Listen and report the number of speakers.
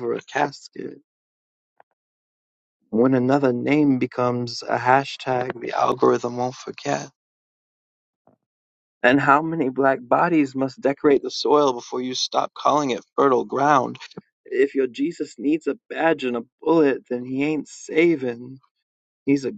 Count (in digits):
1